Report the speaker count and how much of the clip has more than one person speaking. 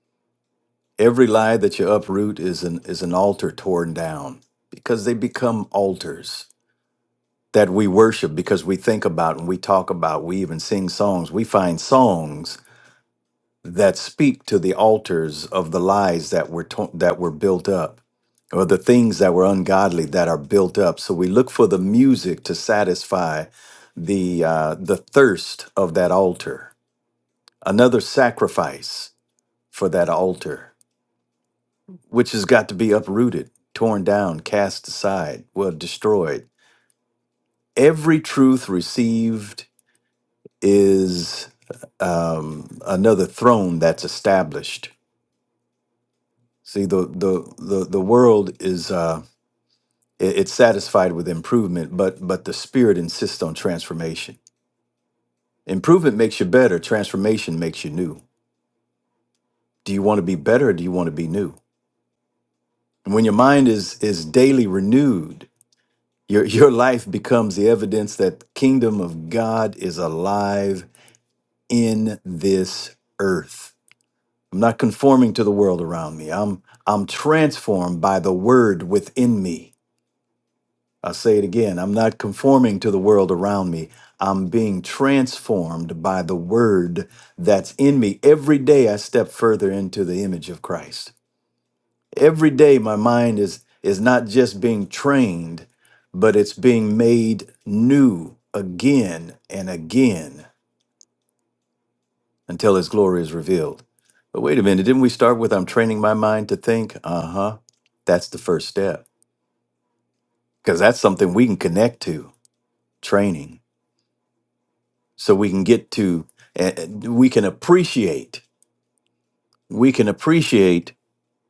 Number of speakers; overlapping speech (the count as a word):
one, no overlap